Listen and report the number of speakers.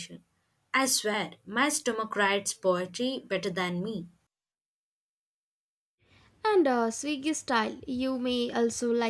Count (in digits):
2